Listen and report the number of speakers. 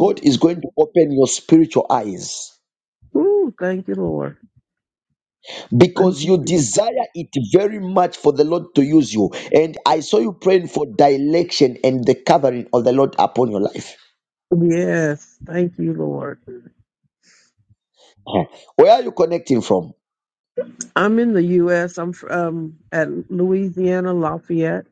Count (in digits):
2